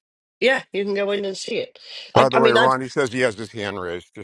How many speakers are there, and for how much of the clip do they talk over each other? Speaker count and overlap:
two, about 13%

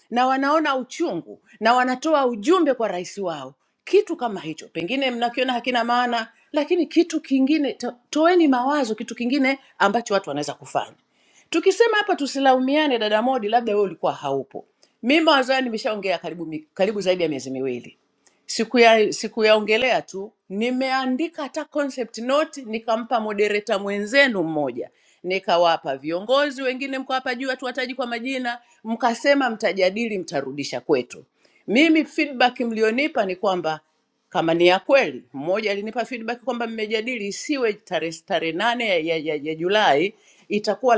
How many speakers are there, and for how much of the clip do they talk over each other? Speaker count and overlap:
one, no overlap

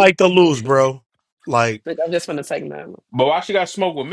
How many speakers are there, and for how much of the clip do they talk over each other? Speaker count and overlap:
three, no overlap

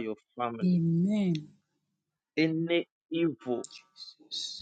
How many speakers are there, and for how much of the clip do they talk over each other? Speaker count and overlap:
two, about 3%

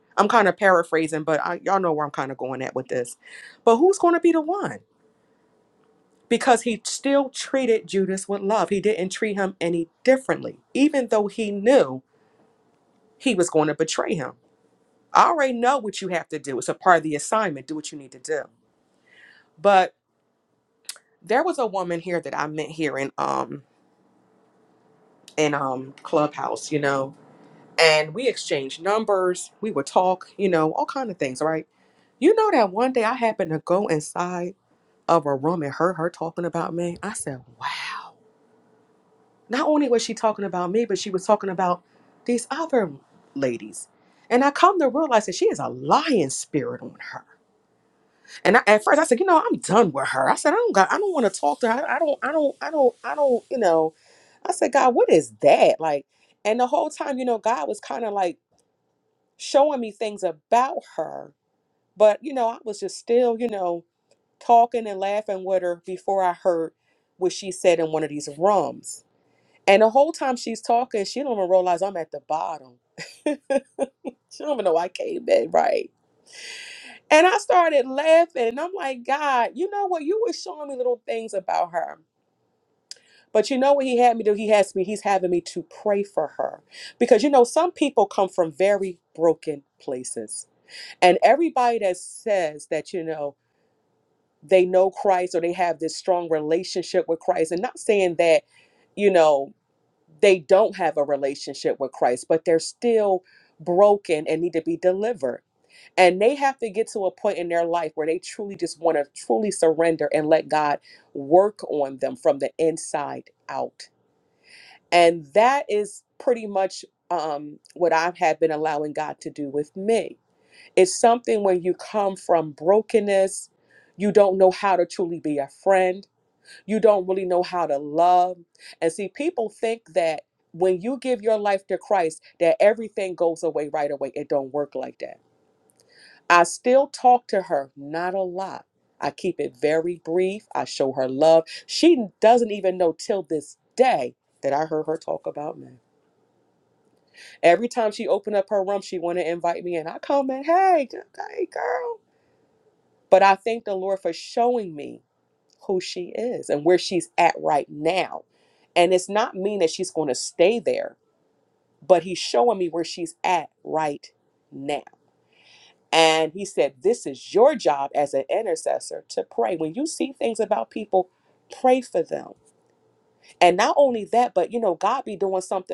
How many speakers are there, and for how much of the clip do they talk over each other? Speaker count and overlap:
one, no overlap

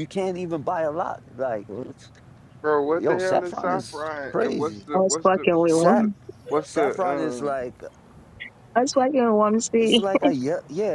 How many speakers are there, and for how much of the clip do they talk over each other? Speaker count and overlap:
three, about 34%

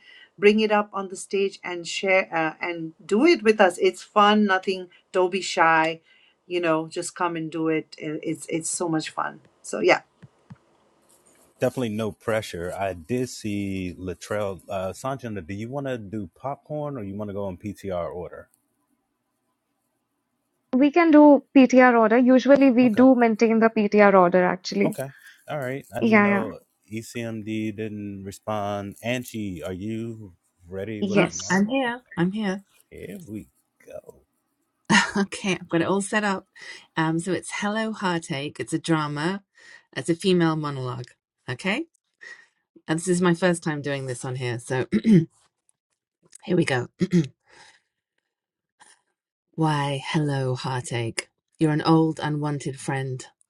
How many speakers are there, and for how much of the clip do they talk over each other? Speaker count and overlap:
four, about 3%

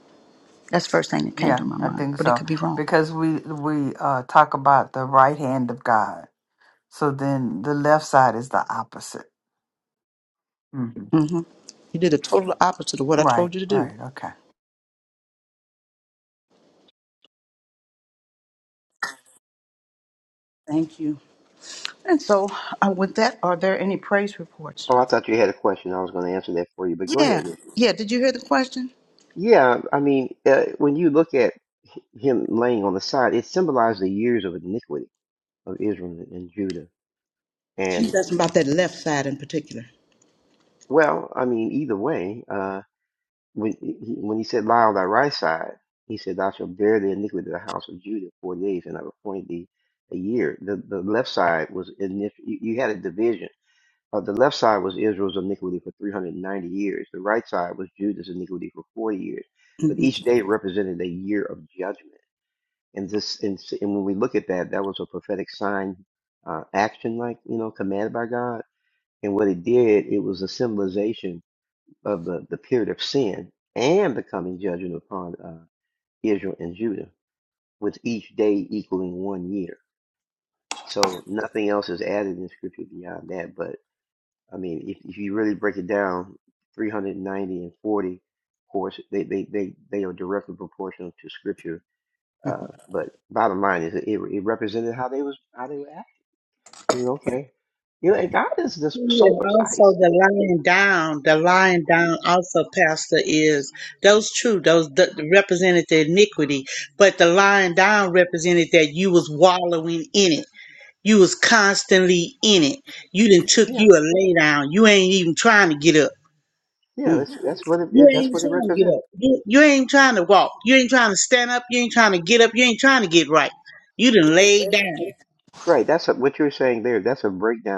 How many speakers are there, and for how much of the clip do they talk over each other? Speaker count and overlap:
four, about 4%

